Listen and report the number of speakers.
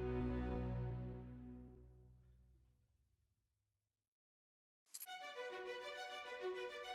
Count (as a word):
zero